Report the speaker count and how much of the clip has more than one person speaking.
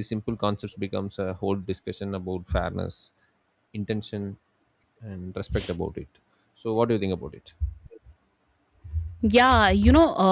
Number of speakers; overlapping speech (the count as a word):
two, no overlap